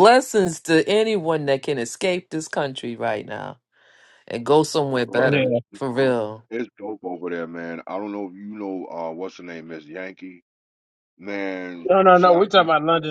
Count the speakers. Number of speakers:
3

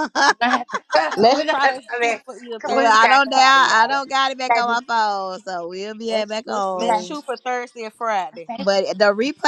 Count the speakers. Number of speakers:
3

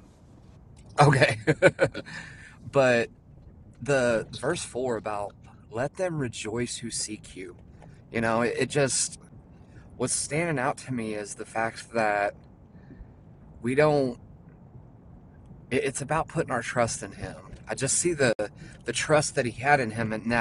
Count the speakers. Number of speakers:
1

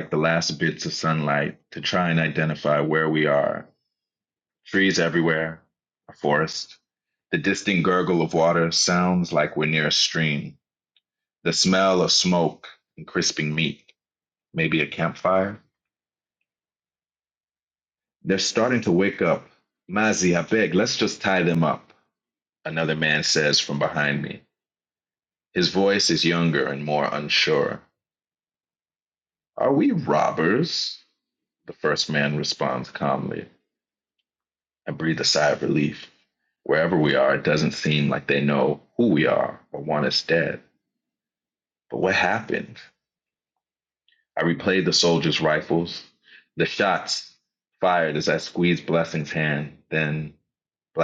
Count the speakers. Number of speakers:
1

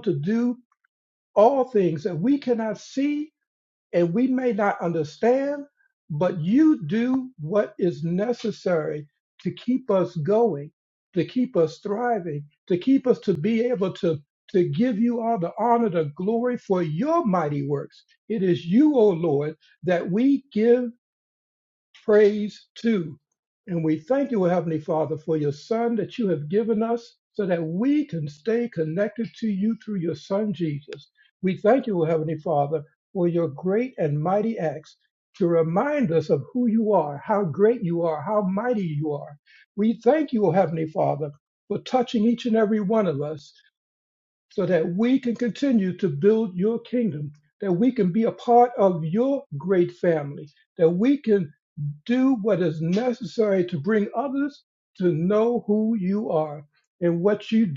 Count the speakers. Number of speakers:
1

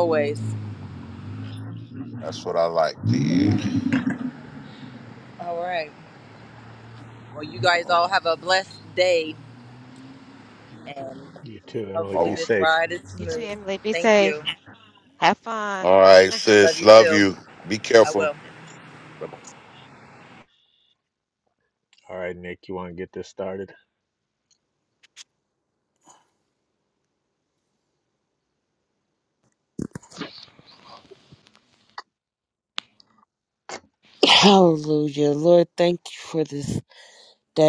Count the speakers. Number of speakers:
5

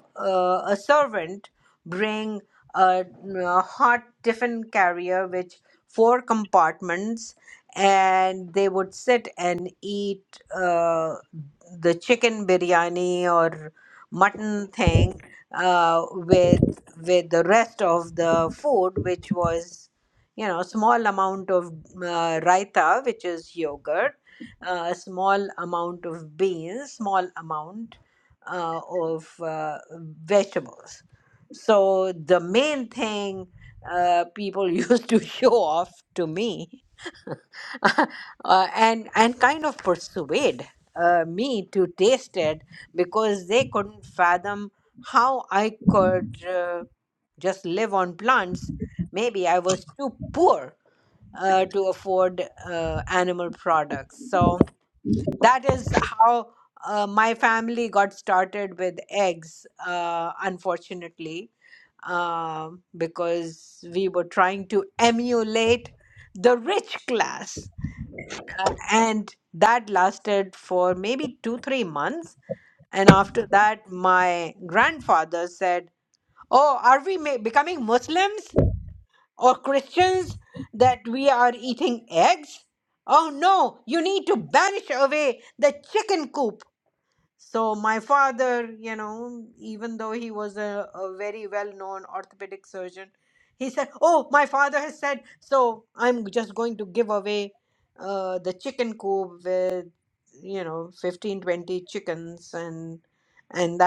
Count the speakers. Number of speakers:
1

